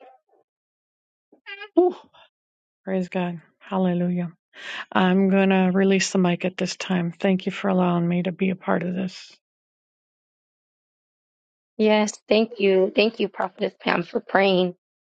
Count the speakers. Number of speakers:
two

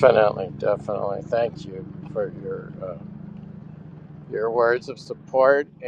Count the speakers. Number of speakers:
one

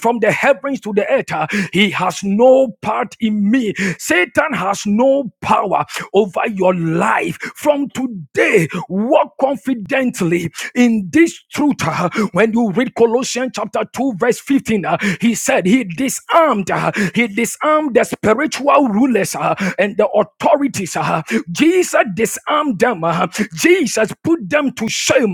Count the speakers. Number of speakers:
one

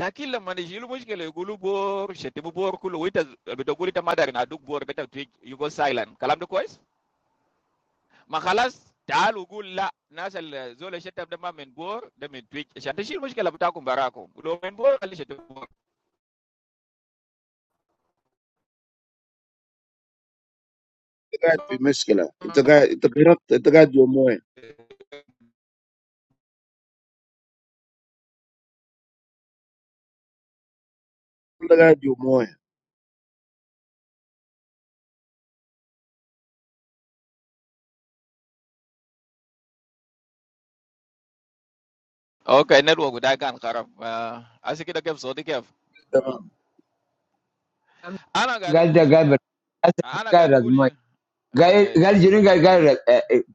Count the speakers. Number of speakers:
three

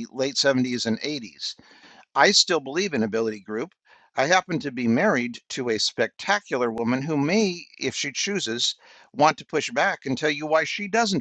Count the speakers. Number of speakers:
one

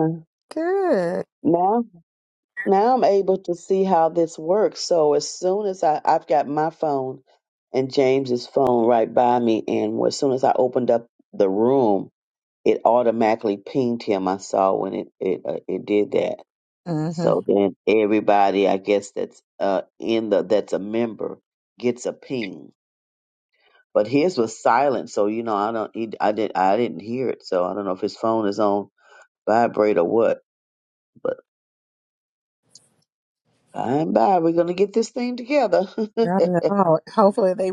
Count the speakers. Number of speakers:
two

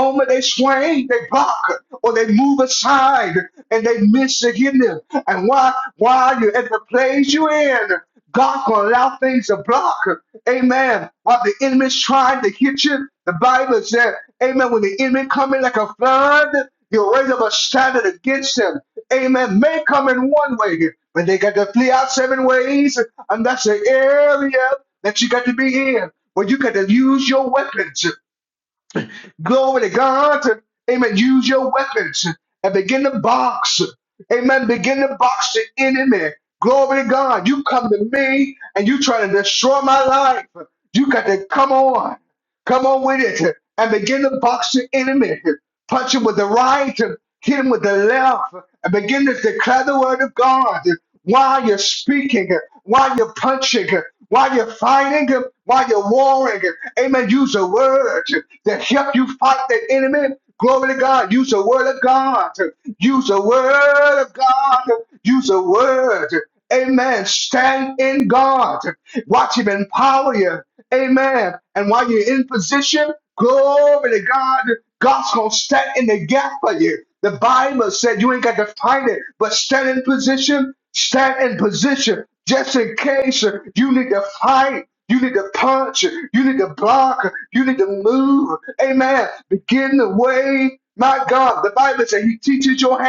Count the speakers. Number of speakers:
one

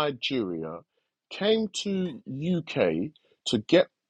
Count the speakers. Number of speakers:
one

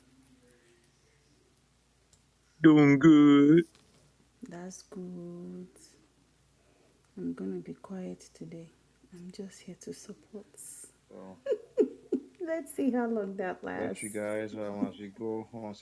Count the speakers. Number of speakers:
three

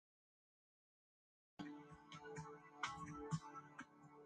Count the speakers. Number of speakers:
zero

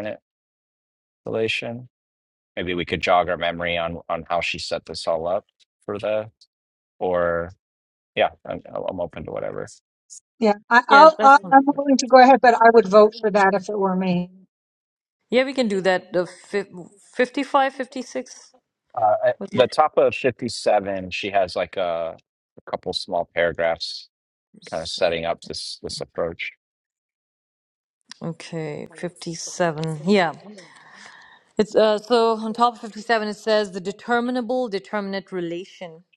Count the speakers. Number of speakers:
three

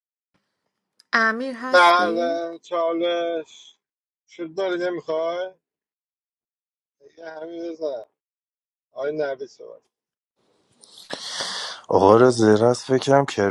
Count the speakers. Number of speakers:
three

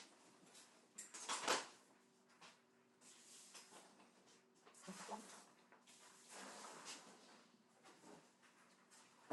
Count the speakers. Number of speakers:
zero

